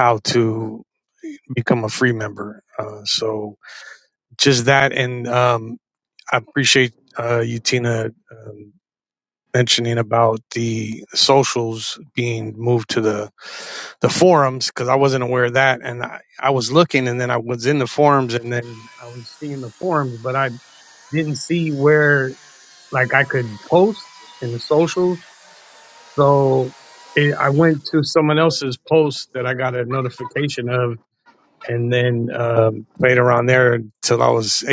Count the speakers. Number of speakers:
1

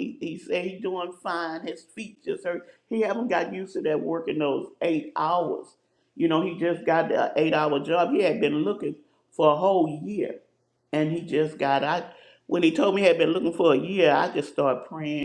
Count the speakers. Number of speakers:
1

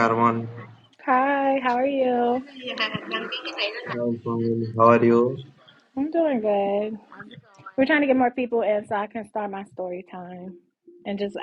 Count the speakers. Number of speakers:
3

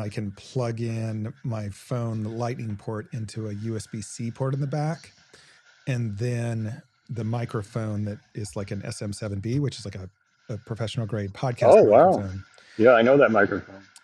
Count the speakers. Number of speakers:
2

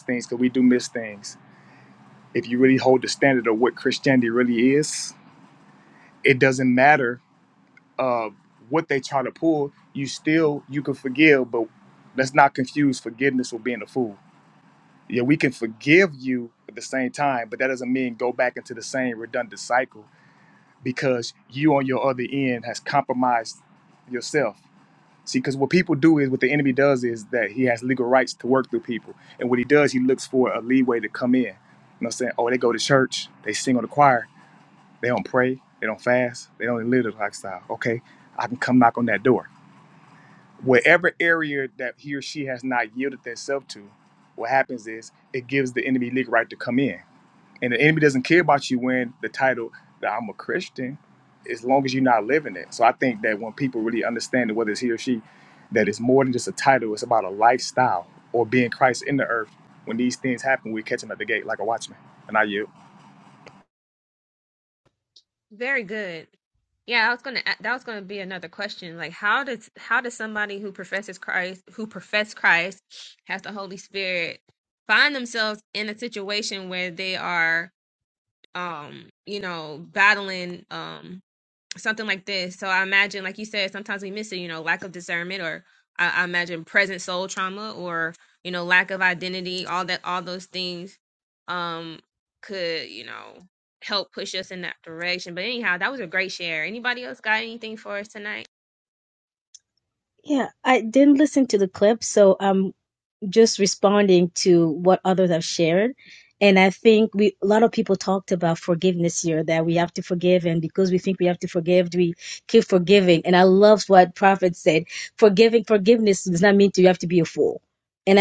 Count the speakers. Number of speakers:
3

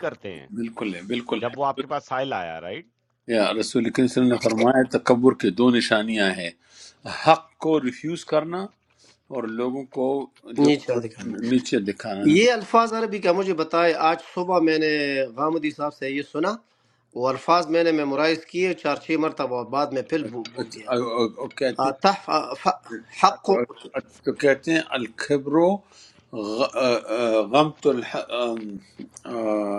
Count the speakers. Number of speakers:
3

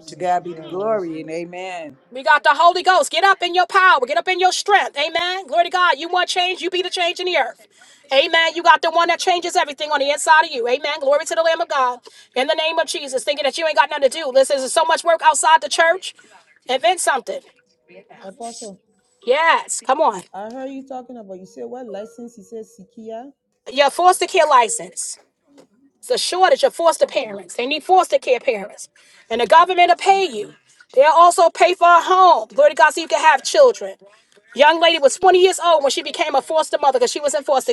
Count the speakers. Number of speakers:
3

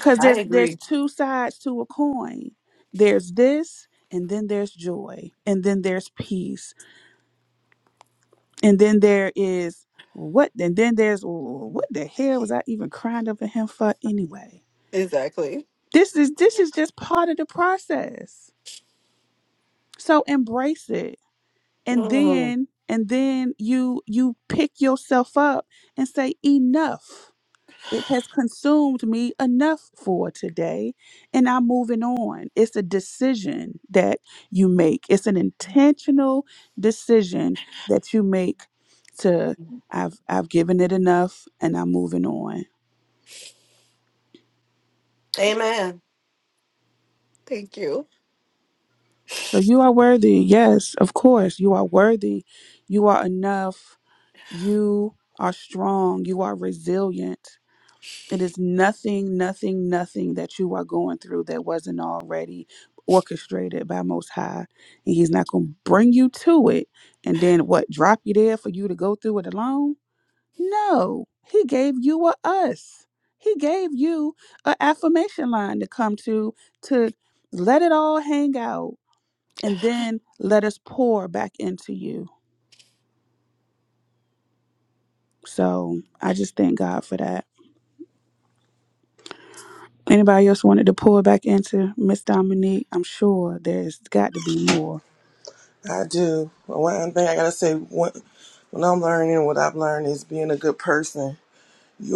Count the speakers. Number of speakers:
4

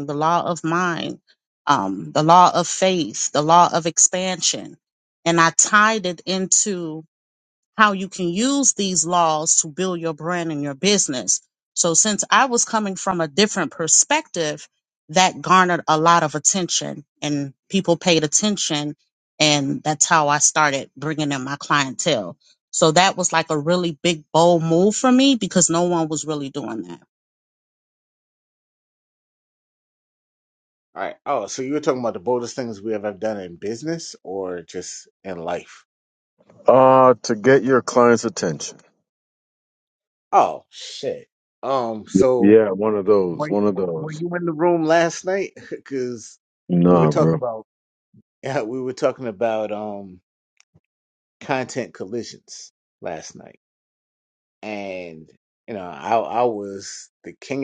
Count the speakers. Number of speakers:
3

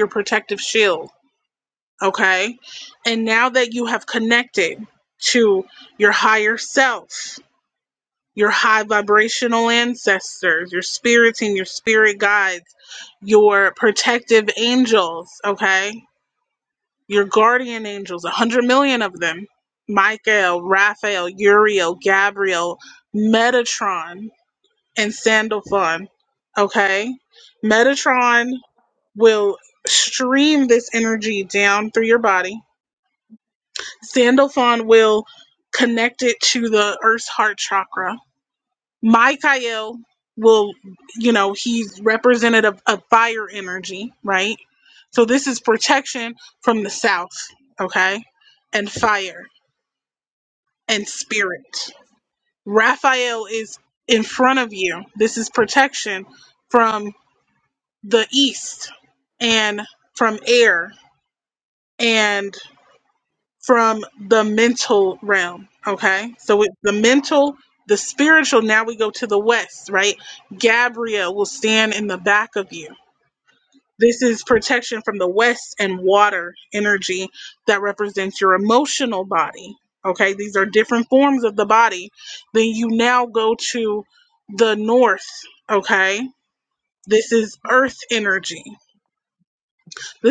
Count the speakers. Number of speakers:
1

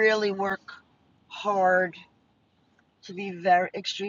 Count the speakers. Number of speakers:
1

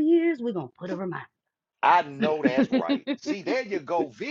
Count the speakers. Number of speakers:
2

